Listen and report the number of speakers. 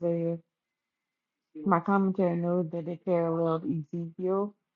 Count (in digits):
1